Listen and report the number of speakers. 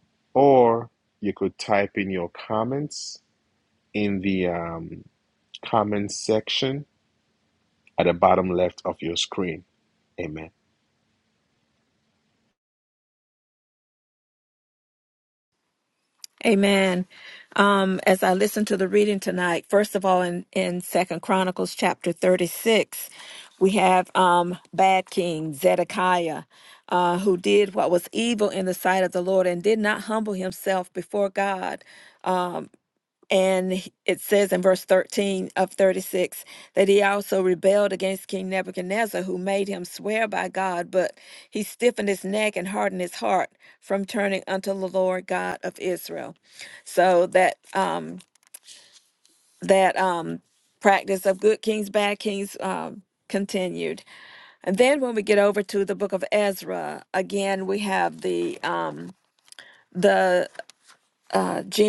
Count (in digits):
2